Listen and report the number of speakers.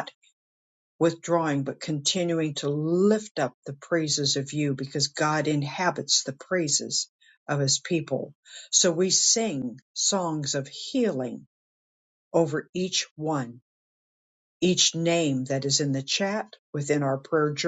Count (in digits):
1